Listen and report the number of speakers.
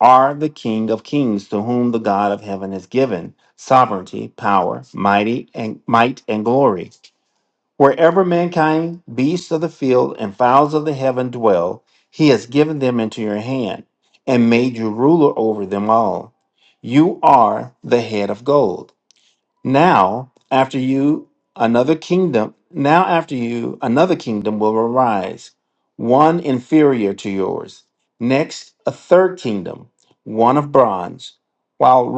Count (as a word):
one